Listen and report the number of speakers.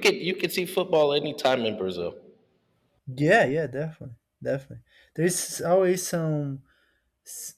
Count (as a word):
two